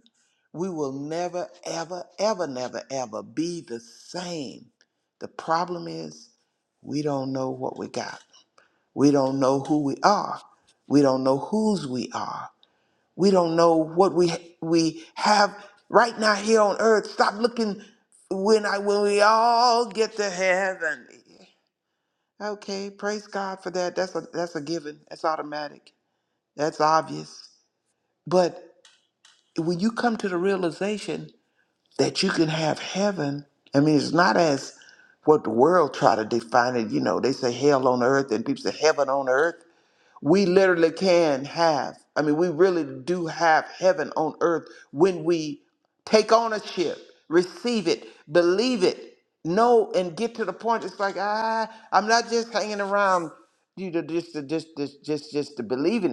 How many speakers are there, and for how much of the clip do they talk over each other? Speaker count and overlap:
1, no overlap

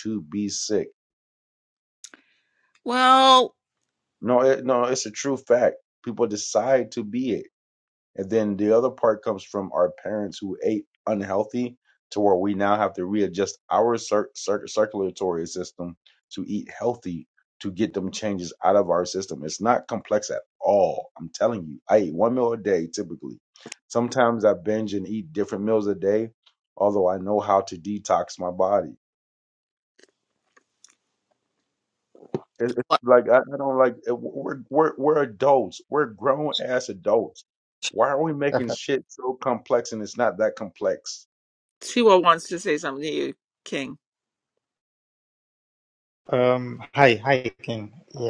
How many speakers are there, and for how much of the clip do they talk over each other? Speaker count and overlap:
3, under 1%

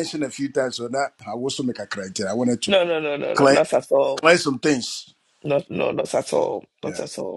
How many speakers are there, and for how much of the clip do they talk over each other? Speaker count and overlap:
2, about 8%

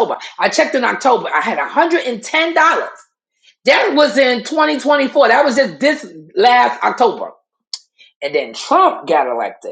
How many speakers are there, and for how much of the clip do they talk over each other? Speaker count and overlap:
1, no overlap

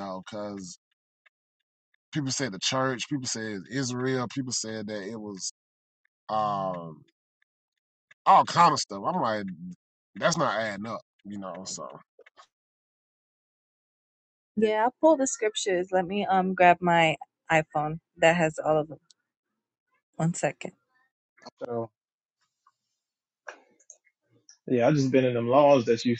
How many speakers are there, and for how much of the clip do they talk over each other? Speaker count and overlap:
3, no overlap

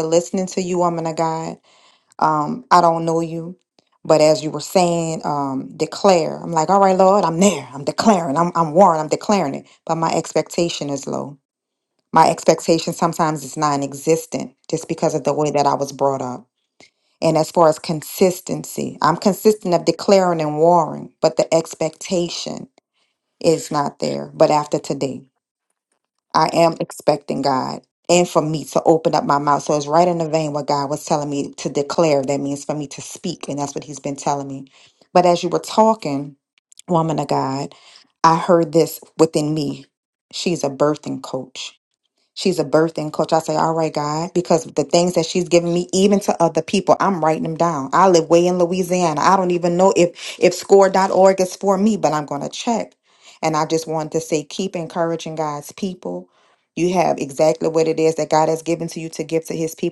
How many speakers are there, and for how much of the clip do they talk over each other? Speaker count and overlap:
1, no overlap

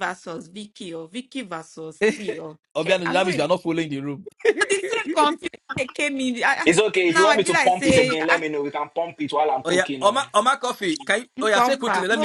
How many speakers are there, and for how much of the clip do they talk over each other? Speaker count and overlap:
3, about 28%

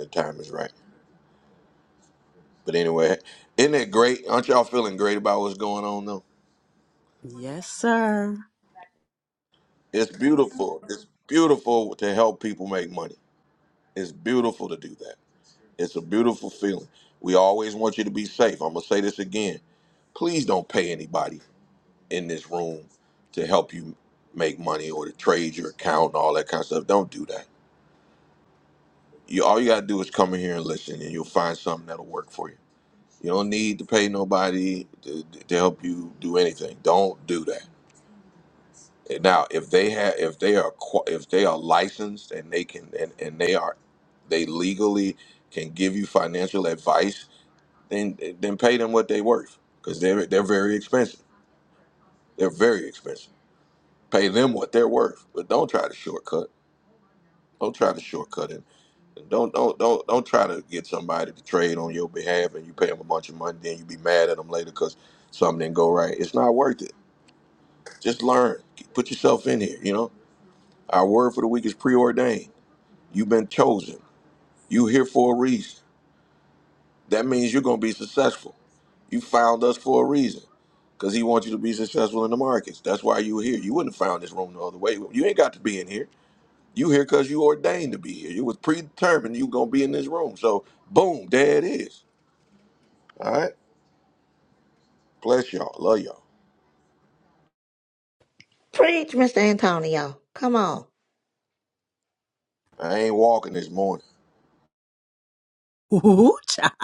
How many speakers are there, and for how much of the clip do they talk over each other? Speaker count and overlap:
3, no overlap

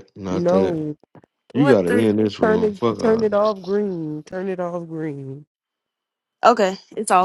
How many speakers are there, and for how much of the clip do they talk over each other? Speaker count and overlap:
3, about 26%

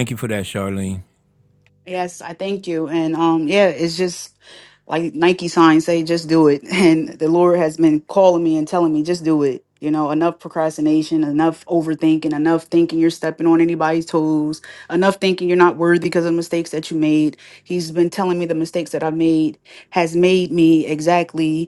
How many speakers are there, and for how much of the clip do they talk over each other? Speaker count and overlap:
2, no overlap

